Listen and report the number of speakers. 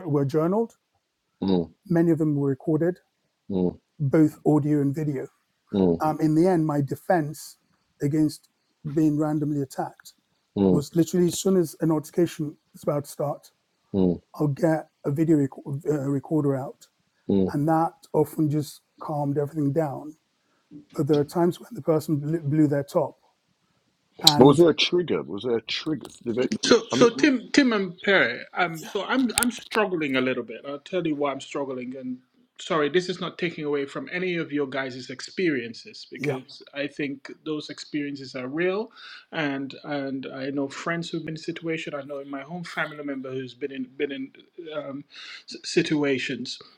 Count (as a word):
three